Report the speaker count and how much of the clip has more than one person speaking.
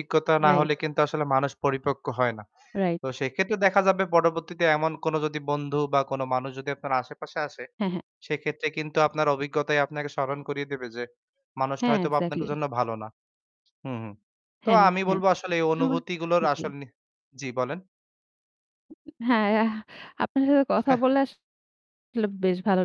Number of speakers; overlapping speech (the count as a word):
two, about 8%